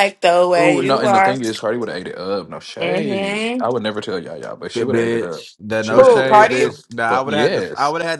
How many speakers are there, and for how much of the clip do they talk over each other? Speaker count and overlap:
three, about 48%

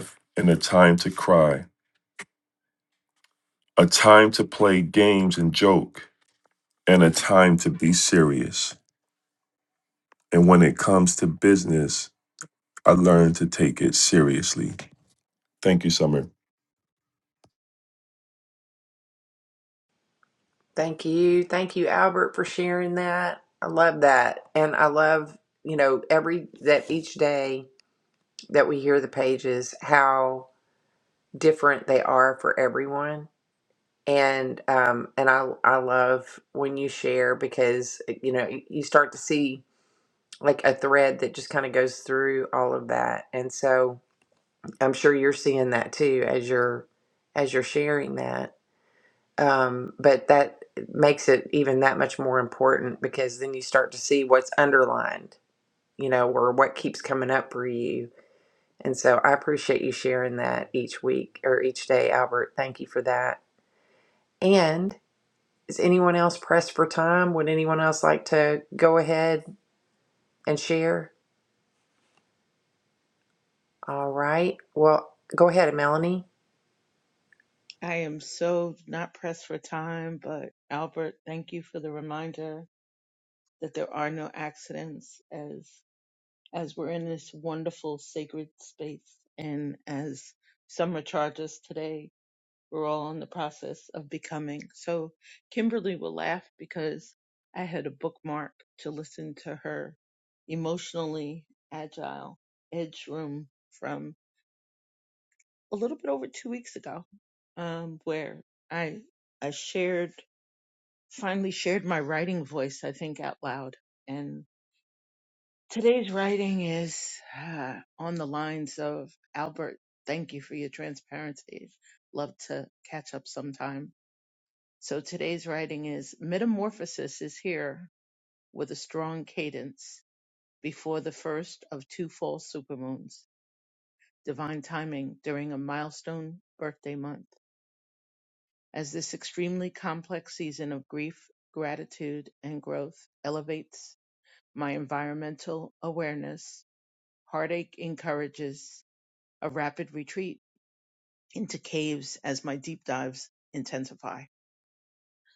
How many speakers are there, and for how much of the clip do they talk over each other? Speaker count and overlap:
three, no overlap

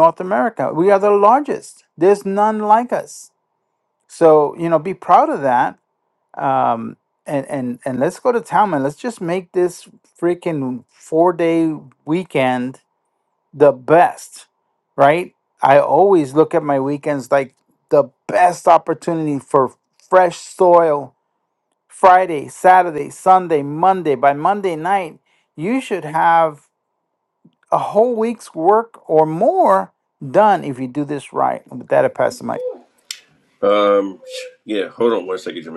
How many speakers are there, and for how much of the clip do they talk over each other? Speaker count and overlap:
two, no overlap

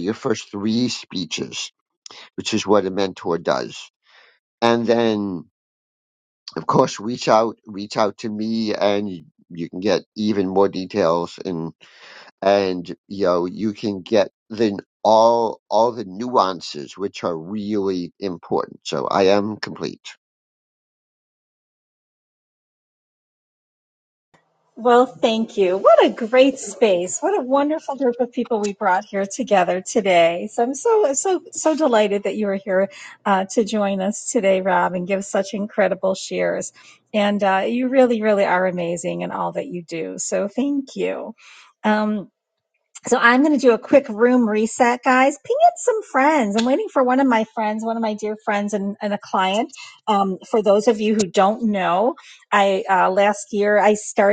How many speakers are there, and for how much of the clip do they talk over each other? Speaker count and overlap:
two, no overlap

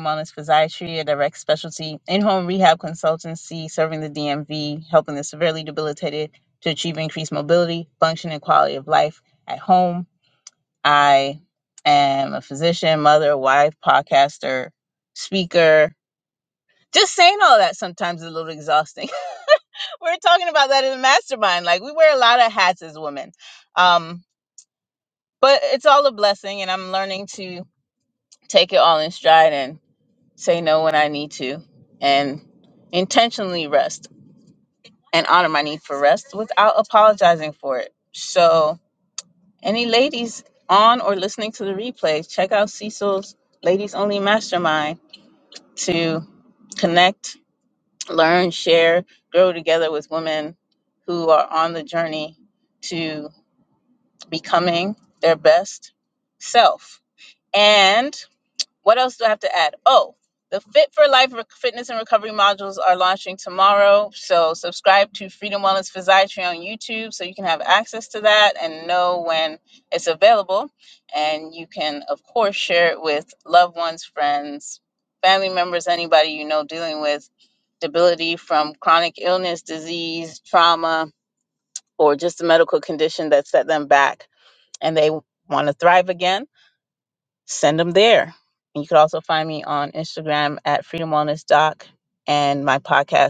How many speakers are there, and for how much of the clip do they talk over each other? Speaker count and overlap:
one, no overlap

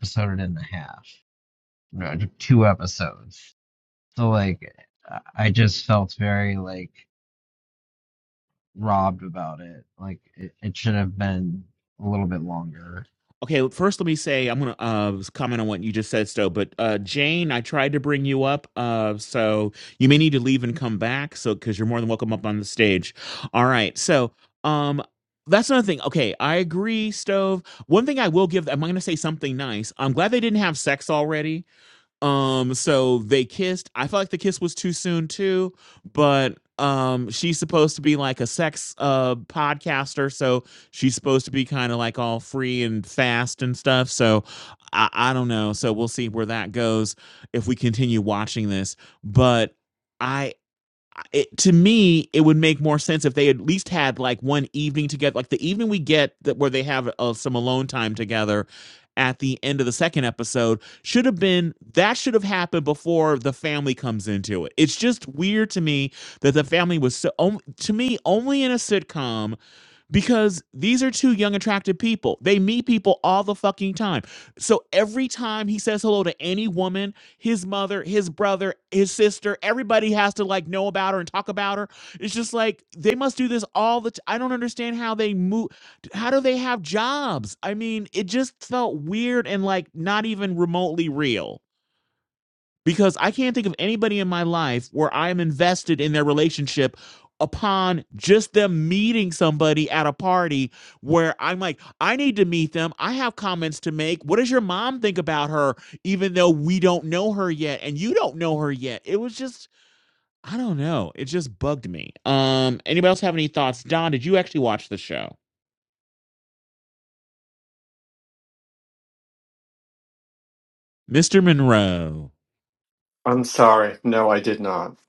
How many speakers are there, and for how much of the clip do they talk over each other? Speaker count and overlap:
three, no overlap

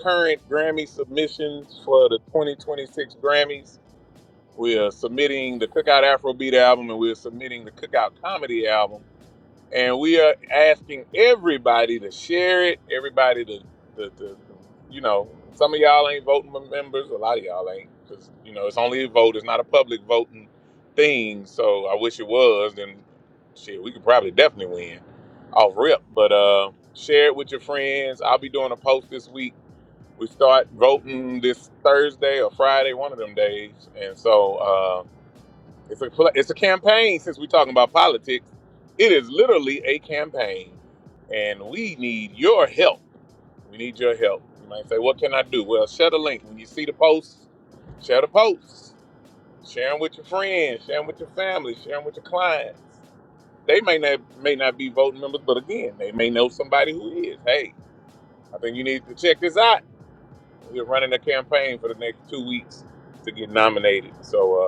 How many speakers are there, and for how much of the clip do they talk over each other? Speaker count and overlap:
one, no overlap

